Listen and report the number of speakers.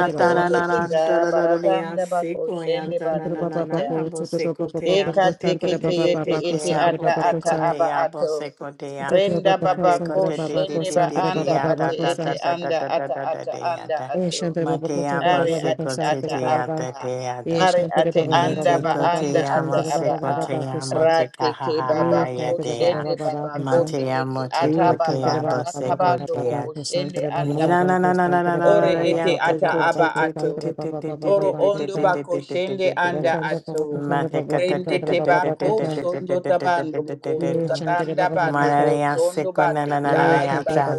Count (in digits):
3